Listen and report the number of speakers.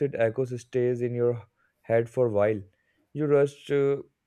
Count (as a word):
one